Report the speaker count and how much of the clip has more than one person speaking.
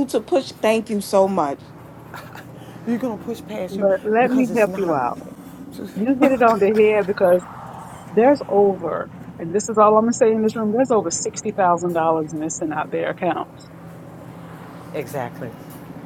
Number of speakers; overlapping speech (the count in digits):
3, about 2%